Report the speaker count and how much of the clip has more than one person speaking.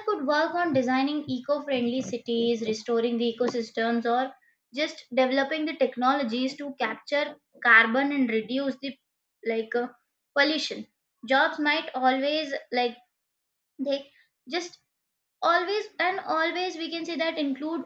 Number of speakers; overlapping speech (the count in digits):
1, no overlap